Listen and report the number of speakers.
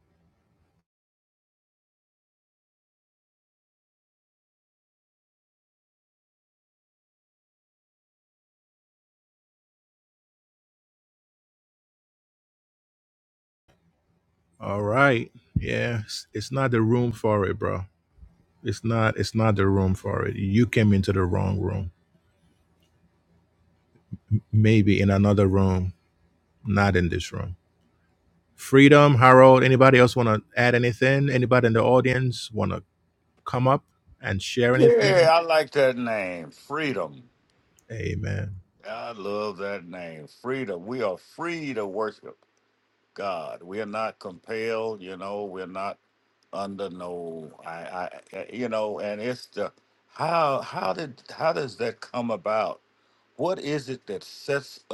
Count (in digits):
2